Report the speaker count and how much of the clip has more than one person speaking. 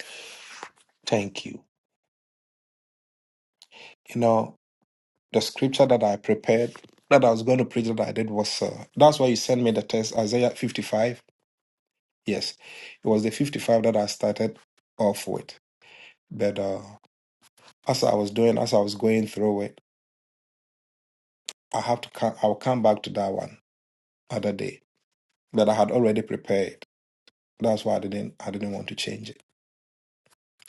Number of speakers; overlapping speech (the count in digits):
1, no overlap